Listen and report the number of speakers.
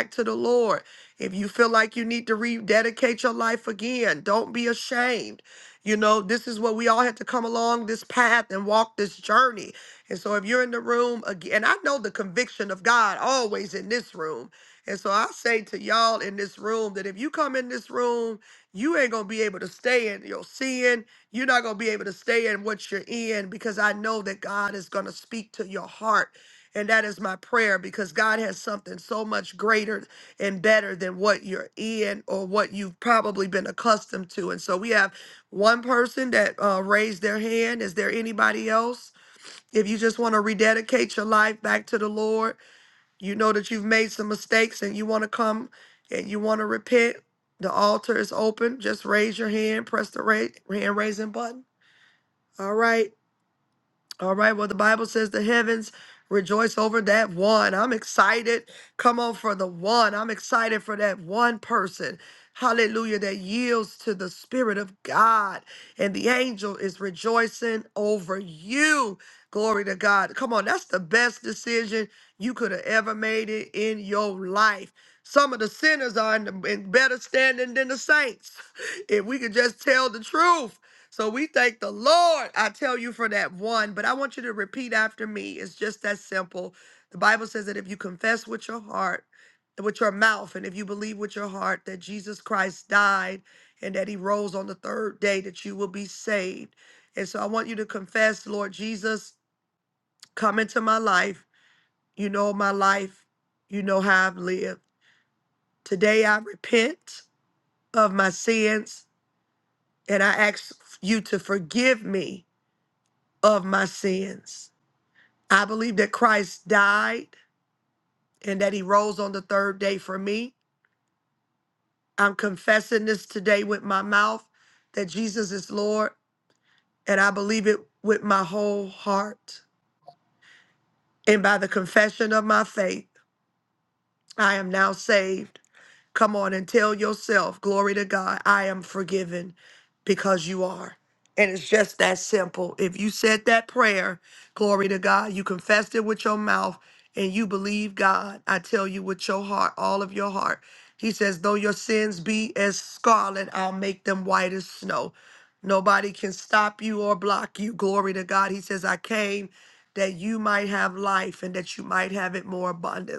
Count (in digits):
1